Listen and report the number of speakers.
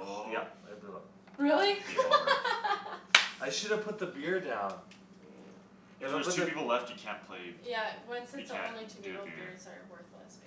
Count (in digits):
3